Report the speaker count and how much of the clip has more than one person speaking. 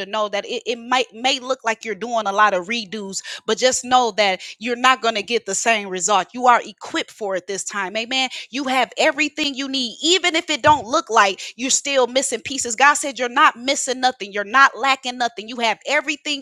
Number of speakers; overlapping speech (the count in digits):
1, no overlap